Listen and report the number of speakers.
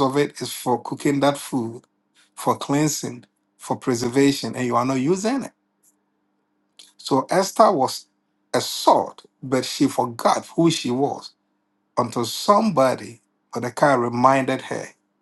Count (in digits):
1